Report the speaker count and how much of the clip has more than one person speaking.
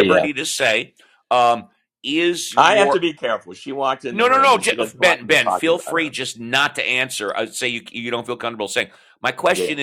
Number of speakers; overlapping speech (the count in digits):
2, about 26%